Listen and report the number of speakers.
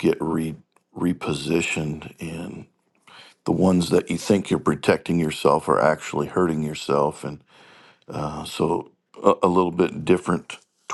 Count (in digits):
1